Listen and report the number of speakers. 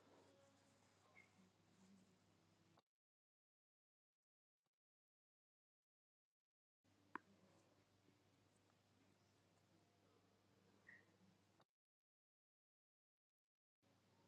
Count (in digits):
0